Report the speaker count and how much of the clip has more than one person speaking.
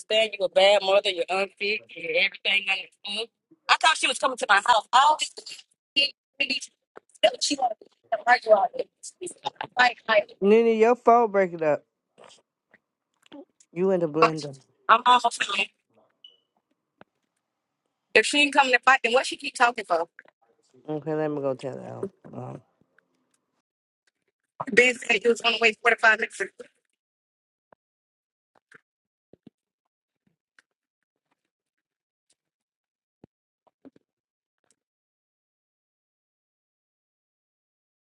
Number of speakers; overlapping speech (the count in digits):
2, no overlap